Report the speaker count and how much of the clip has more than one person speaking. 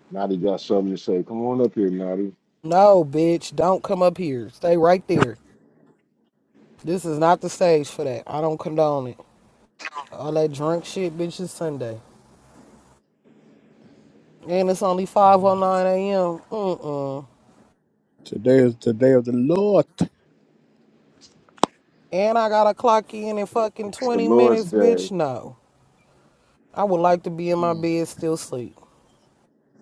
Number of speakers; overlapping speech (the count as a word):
three, about 4%